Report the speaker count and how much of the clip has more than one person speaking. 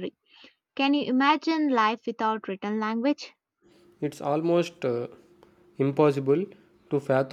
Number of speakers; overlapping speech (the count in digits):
2, no overlap